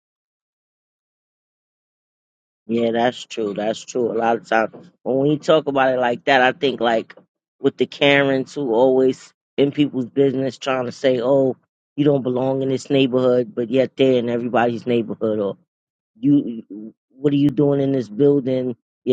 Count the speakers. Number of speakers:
1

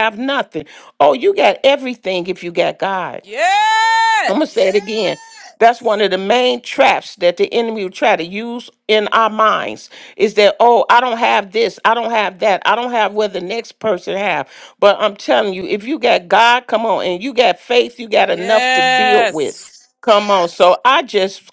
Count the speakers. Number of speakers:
2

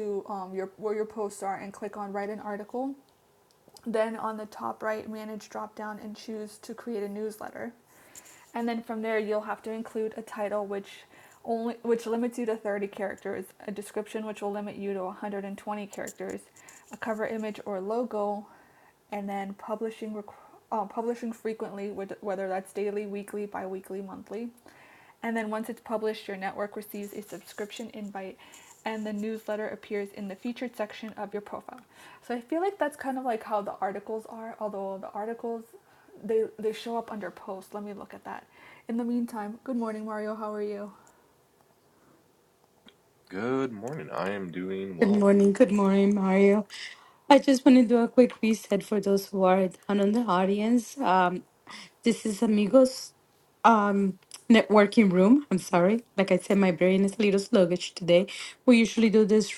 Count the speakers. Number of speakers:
3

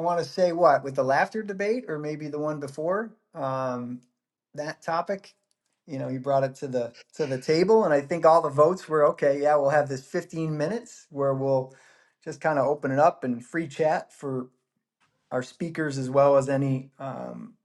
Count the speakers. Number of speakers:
1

